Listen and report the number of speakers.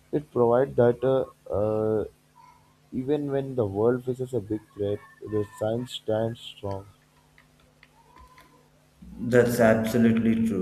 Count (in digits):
2